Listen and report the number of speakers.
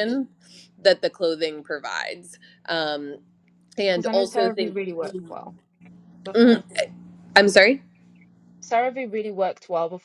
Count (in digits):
2